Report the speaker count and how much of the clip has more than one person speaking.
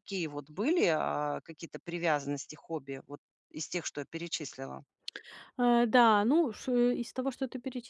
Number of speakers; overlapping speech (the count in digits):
2, no overlap